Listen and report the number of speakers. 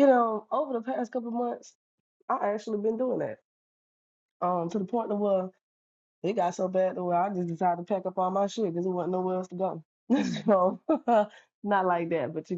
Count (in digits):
1